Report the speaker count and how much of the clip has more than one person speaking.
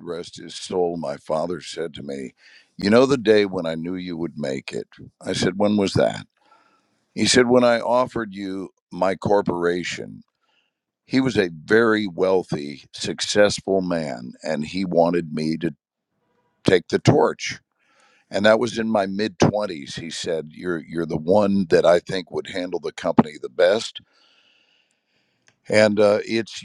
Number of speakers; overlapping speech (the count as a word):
one, no overlap